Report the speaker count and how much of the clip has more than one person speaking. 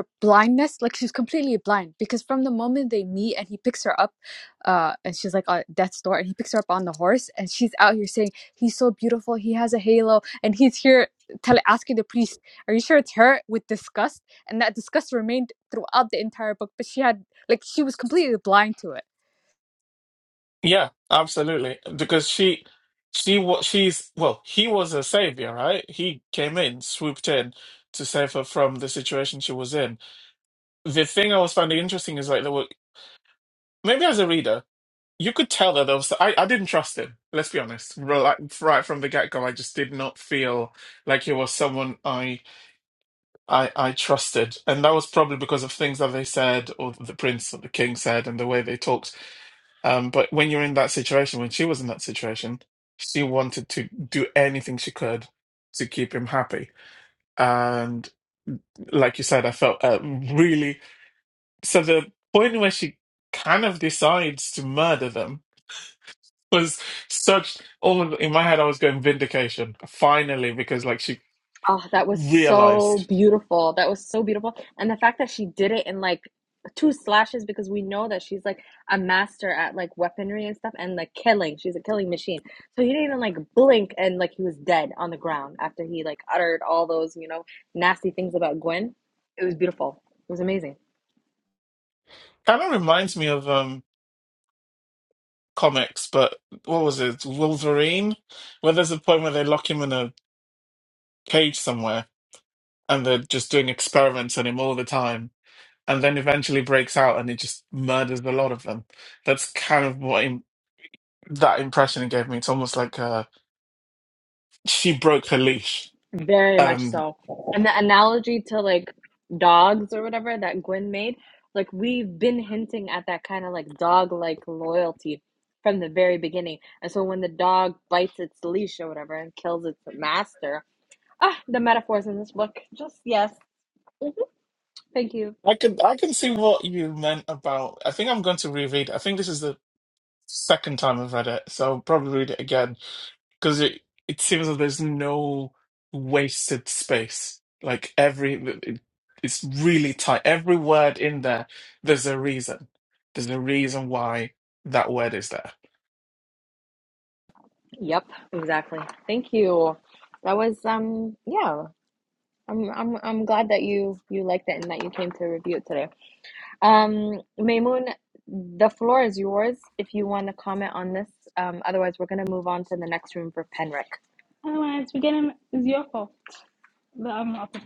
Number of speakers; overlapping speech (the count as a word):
four, about 1%